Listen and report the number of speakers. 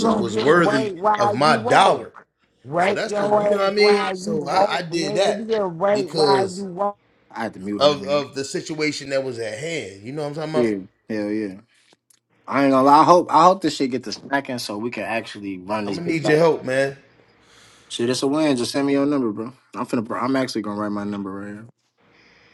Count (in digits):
3